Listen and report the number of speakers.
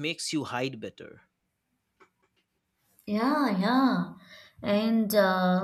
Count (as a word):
two